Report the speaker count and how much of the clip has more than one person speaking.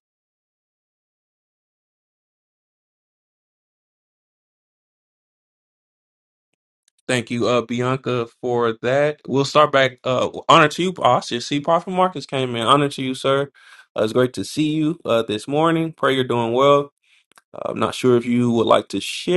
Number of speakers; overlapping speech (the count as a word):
one, no overlap